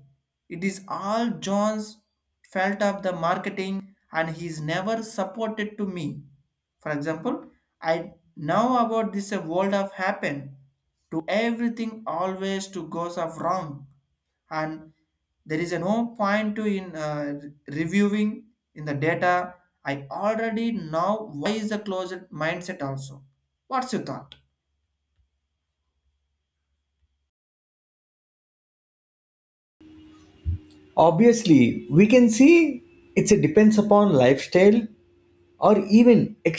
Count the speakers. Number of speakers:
2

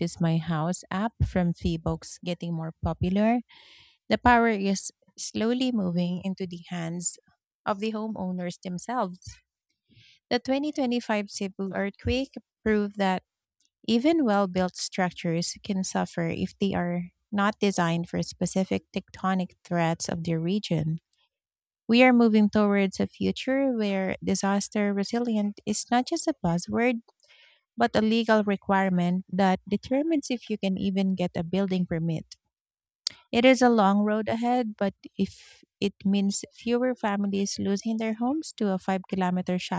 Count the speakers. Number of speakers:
1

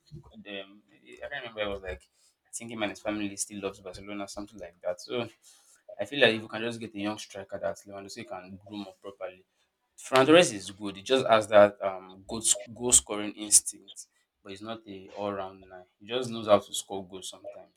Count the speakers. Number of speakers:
1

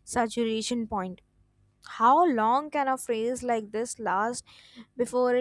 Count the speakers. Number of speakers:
1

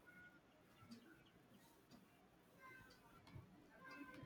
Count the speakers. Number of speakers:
0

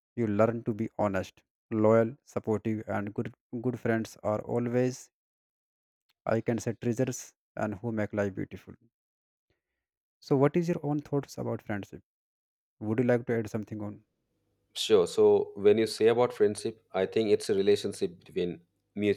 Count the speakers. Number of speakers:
2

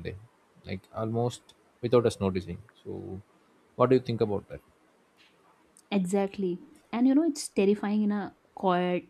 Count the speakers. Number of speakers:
2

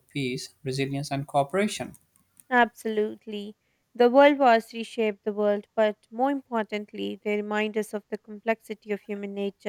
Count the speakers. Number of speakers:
2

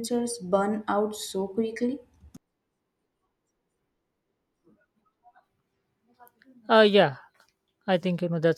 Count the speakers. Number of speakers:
2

